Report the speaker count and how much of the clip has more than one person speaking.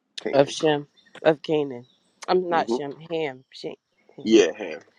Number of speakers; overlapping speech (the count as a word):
two, about 11%